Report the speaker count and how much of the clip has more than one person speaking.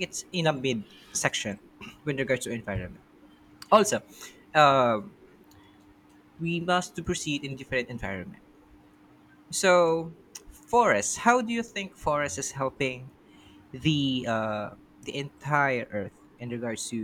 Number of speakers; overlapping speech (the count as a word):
one, no overlap